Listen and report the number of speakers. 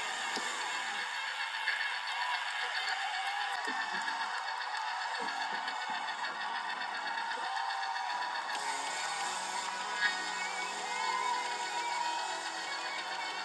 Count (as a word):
zero